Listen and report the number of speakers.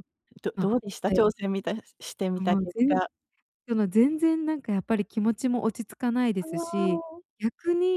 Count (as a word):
two